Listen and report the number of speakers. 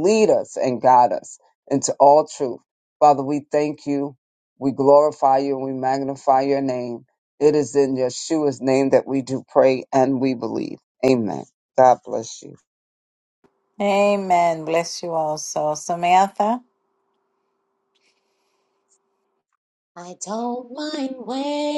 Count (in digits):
3